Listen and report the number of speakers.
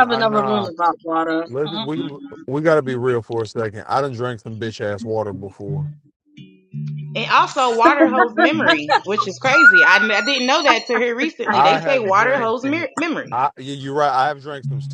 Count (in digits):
3